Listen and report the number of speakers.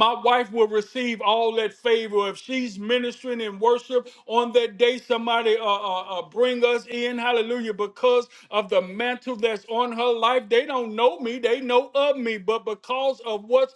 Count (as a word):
one